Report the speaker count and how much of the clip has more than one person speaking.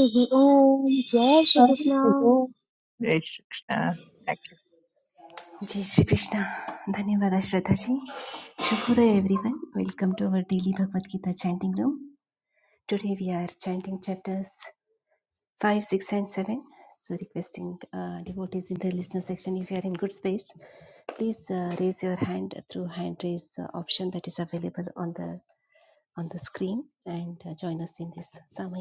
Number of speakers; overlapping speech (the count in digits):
3, about 2%